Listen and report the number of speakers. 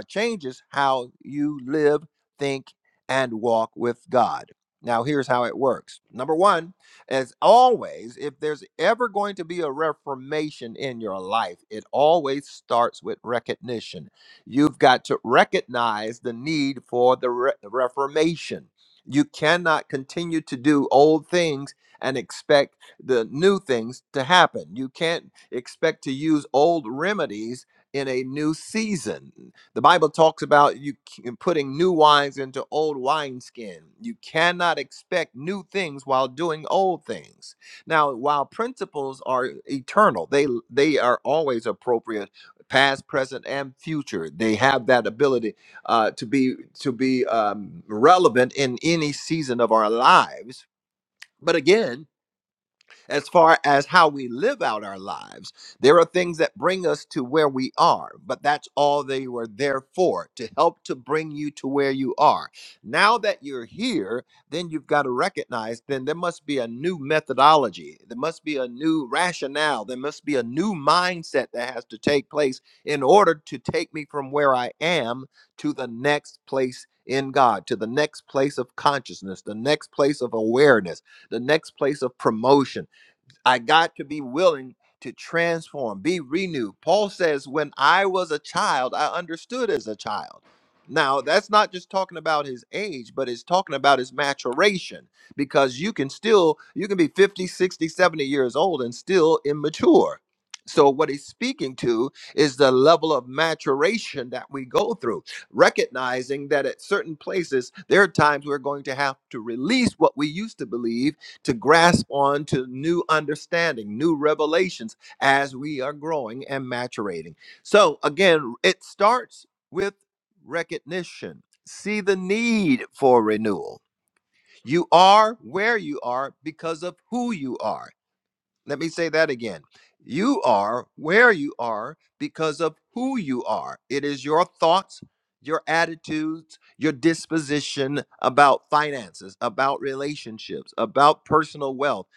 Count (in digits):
1